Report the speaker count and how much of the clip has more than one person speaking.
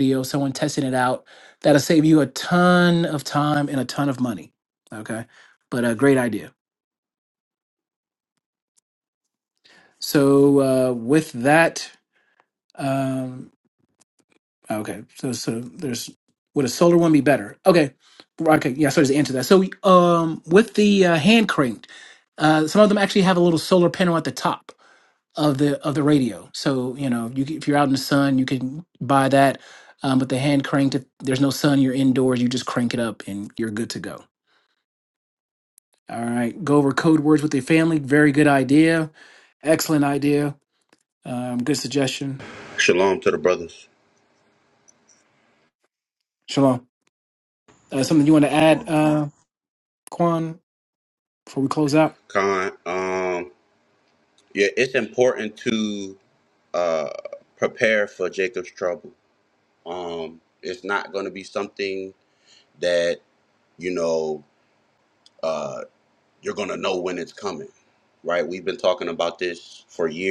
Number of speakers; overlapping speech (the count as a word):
two, no overlap